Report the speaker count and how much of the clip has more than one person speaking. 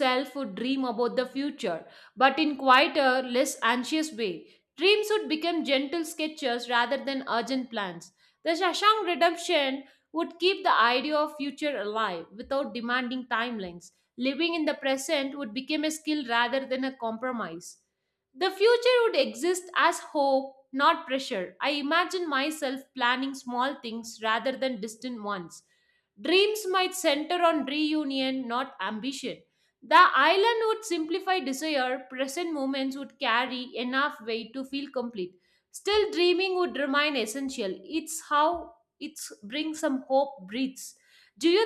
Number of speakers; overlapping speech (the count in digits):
1, no overlap